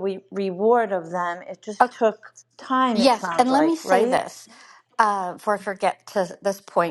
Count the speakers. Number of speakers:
2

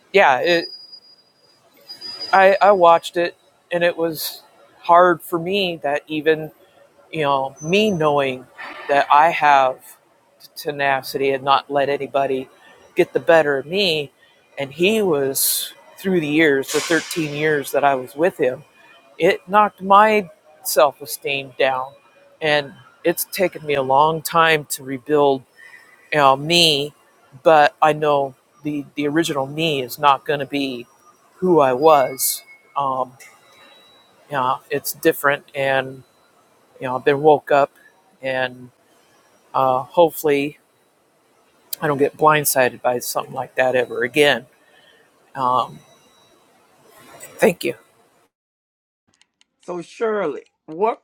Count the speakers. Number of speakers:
2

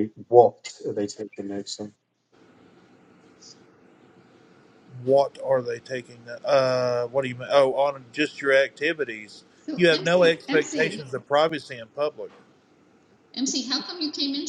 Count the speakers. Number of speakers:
3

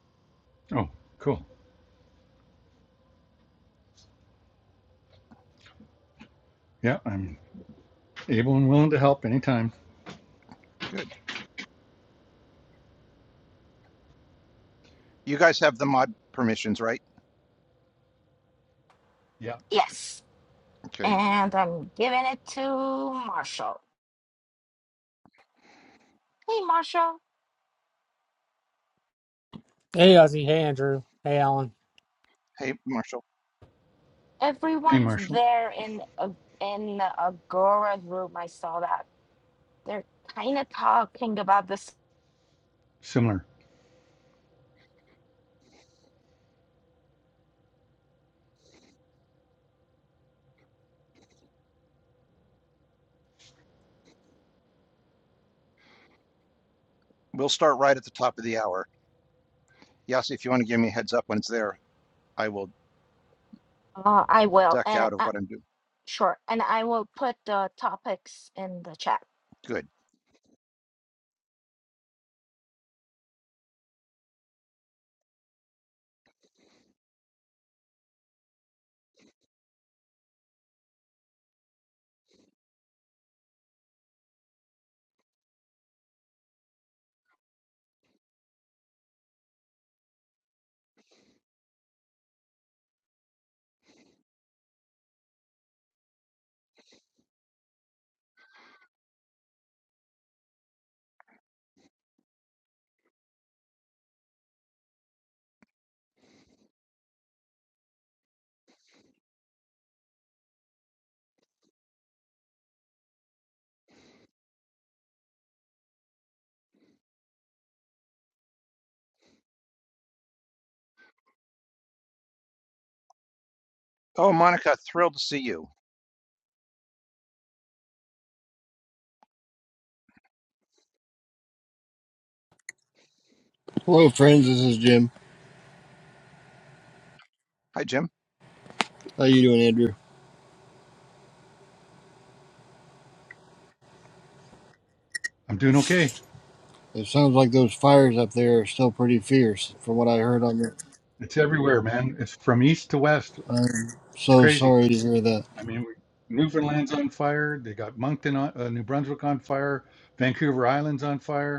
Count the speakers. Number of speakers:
5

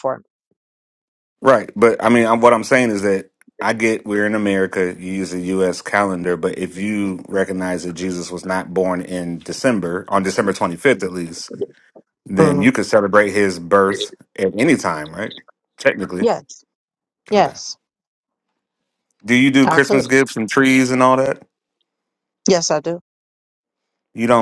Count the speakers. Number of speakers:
2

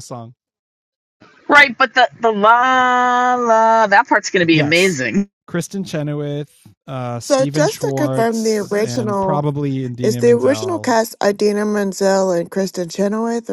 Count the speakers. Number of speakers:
3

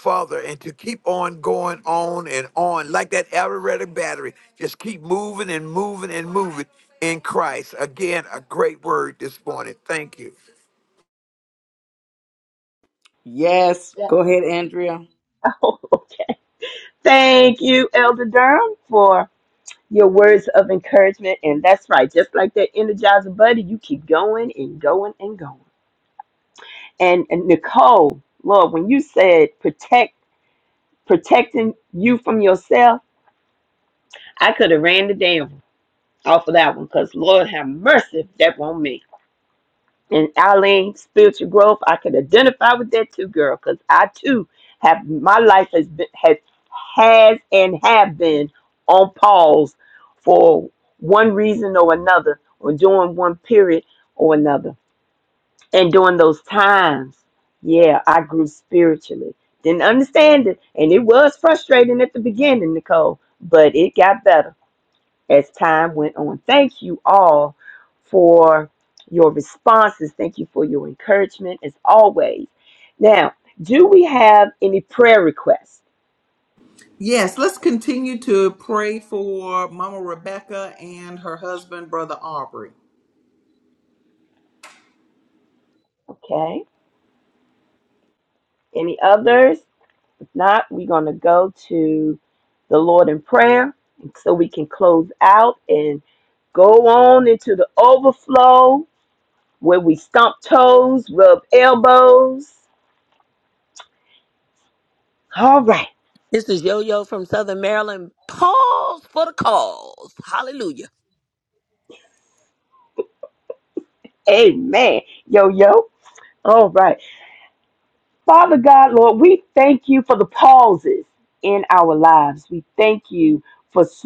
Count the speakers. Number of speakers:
5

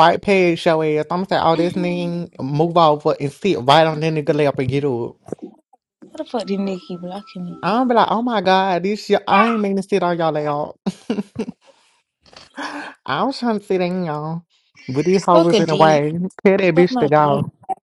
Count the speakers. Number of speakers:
2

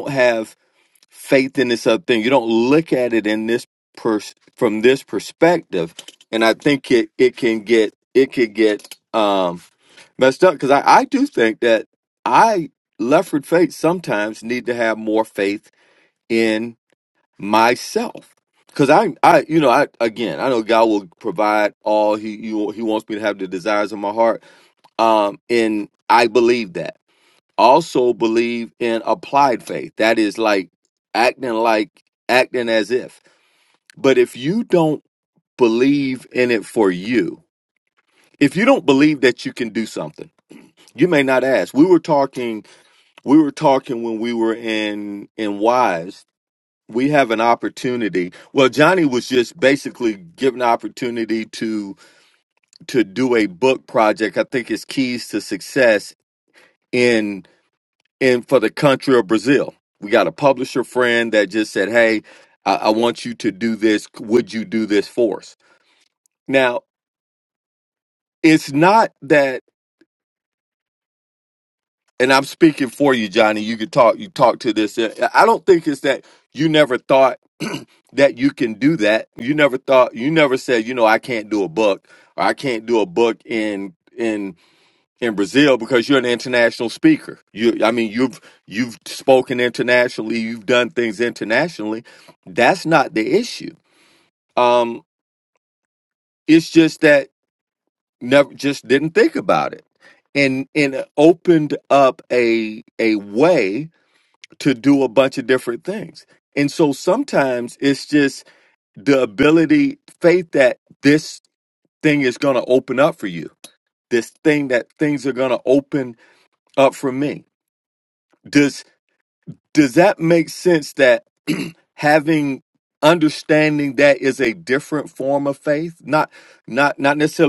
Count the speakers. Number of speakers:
1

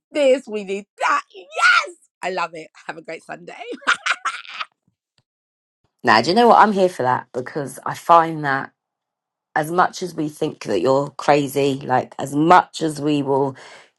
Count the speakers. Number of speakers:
2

